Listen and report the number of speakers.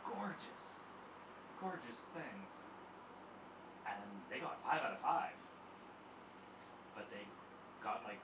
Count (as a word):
one